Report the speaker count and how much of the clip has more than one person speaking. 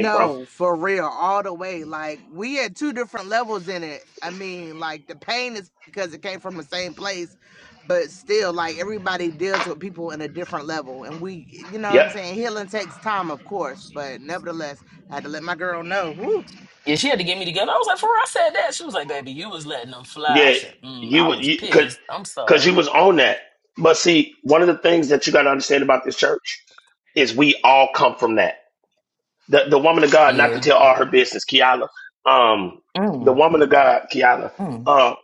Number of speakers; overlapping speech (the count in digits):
3, about 7%